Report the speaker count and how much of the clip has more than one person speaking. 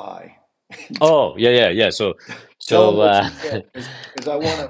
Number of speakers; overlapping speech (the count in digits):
2, about 14%